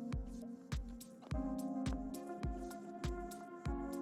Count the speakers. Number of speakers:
0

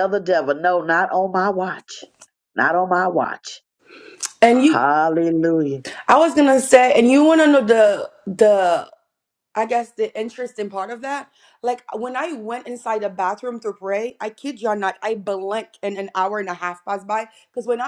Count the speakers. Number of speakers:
2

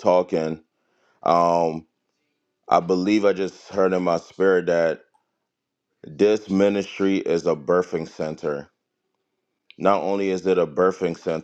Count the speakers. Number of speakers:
1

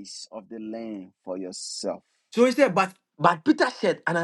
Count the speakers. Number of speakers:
2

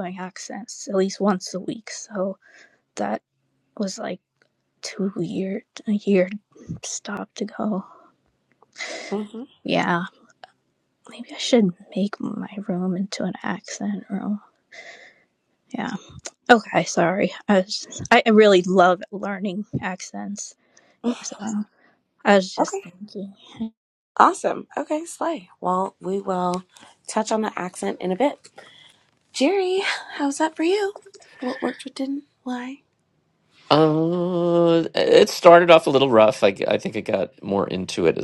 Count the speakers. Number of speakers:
3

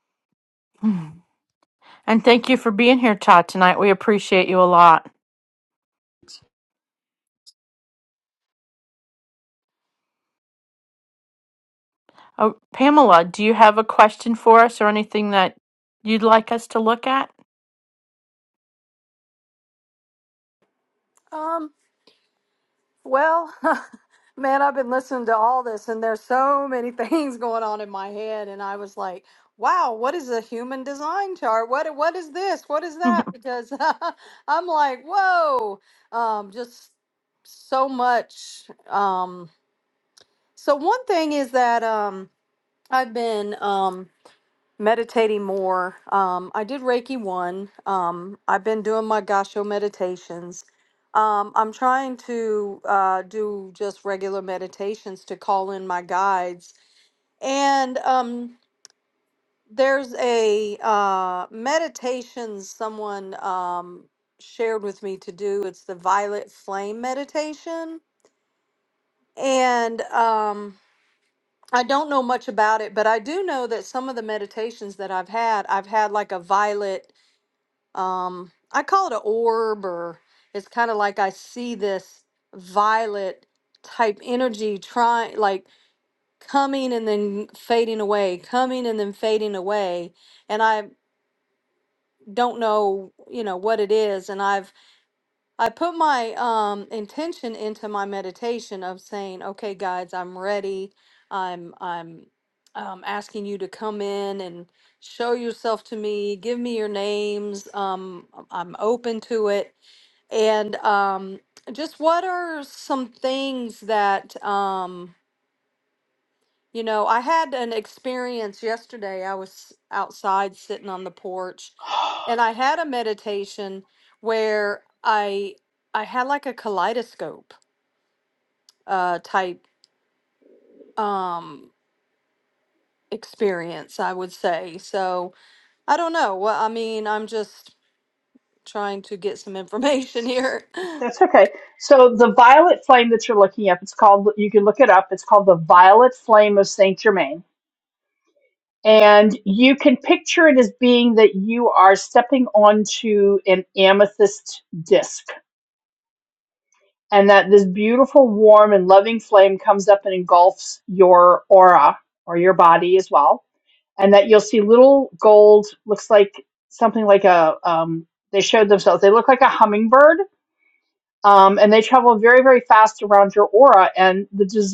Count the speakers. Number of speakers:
3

